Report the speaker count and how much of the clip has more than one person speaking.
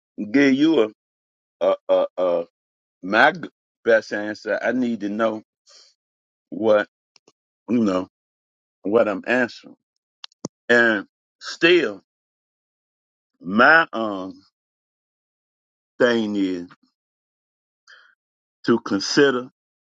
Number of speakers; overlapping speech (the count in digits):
1, no overlap